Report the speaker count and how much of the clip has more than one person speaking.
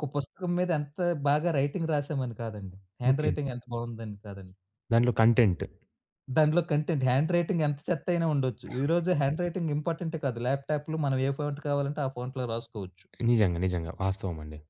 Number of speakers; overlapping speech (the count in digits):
2, about 2%